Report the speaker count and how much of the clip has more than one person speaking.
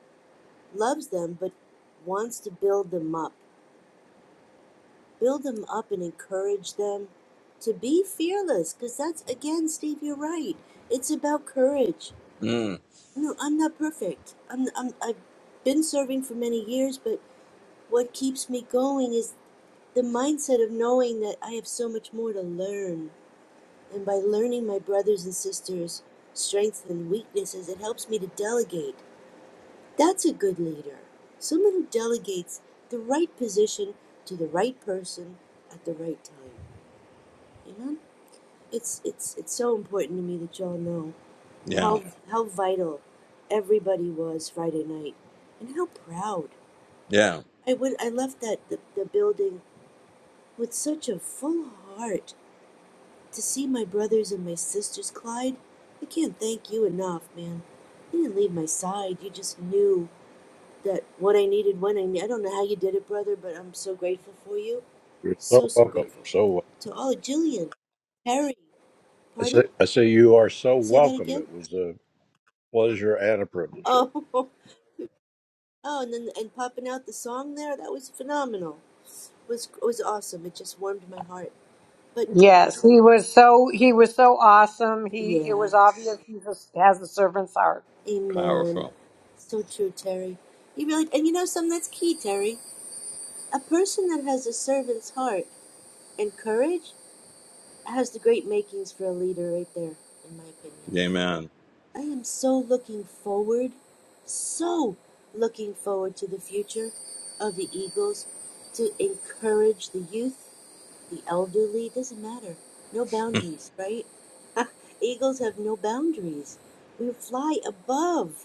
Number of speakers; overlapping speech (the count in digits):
4, about 3%